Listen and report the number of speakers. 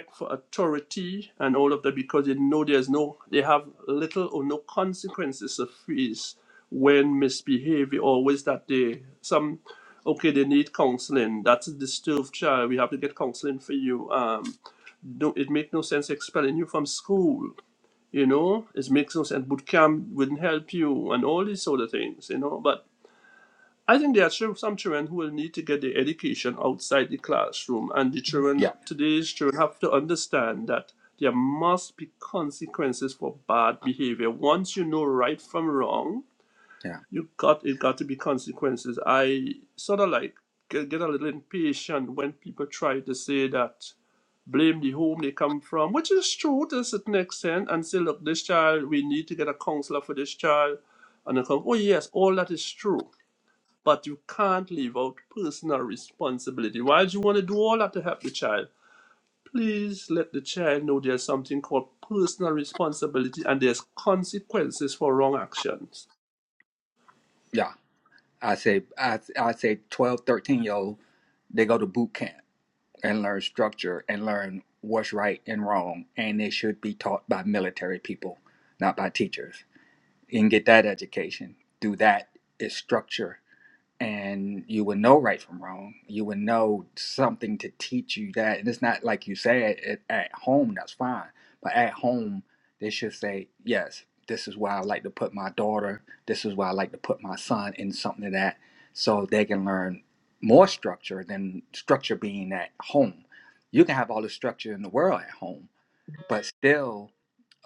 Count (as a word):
two